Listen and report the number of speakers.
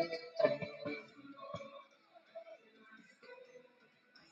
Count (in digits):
0